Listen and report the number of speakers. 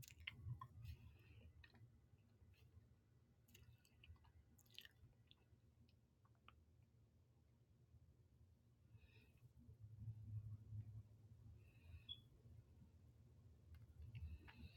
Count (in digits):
0